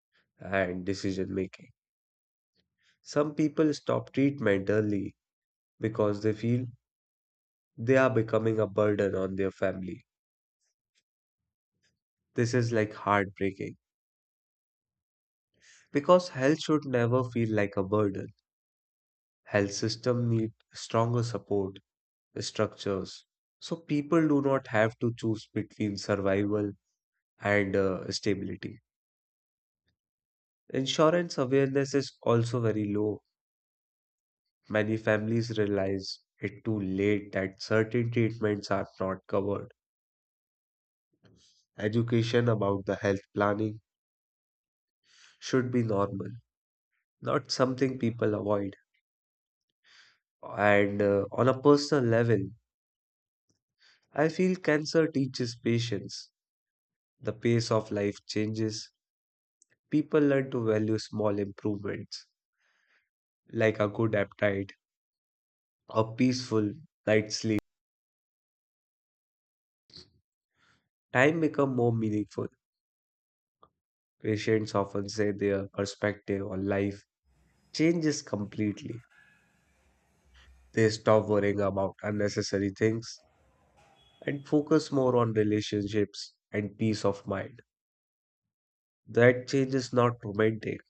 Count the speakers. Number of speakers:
1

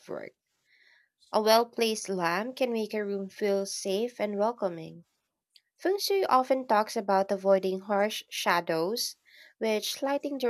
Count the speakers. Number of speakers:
1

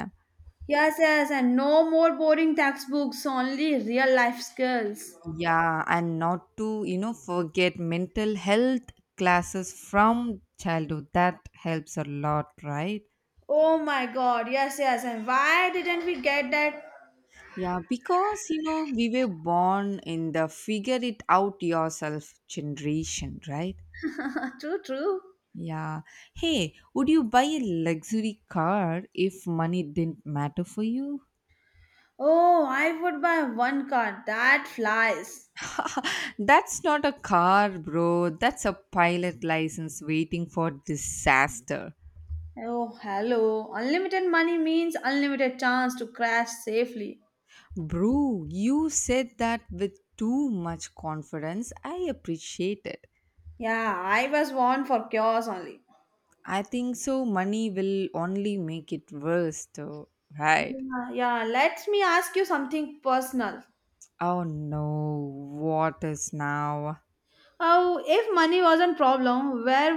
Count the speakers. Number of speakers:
2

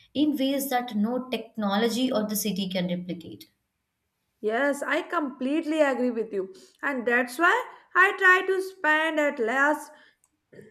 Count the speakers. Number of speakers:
2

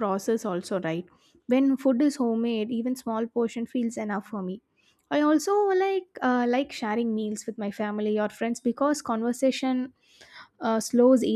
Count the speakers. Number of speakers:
1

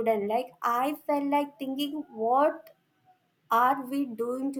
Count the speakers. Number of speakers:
1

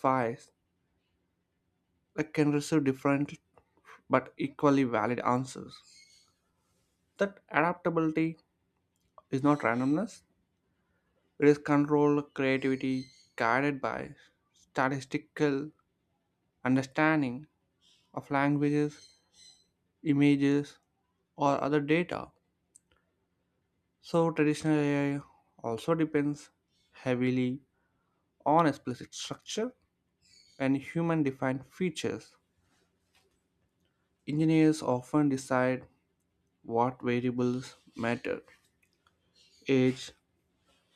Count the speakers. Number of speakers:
1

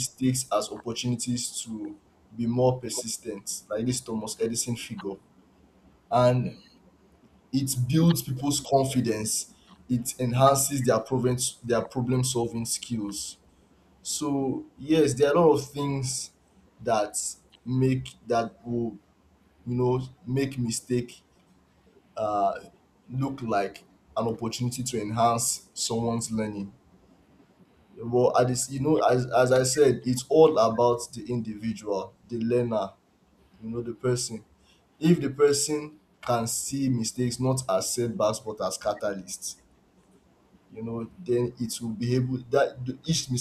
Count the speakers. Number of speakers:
1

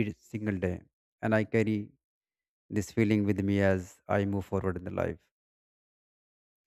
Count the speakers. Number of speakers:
1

